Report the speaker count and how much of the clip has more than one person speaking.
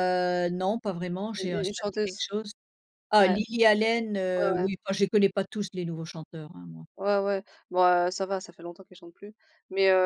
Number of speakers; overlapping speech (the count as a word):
two, about 14%